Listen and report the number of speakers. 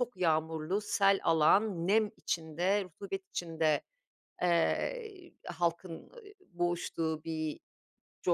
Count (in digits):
1